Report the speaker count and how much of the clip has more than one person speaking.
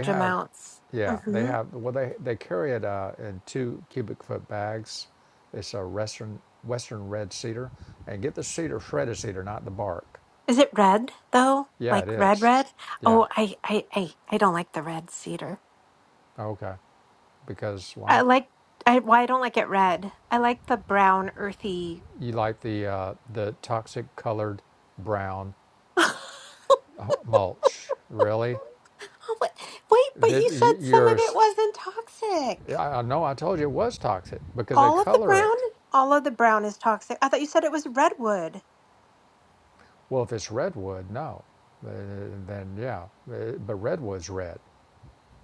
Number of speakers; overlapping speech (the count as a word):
two, about 9%